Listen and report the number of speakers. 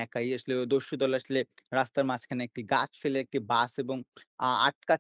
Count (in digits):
1